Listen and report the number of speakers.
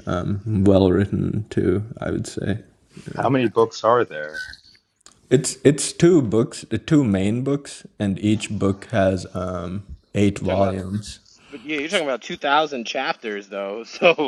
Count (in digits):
3